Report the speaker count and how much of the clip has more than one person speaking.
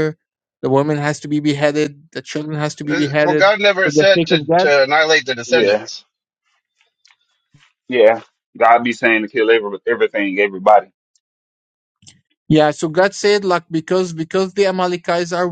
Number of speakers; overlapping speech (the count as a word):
three, about 11%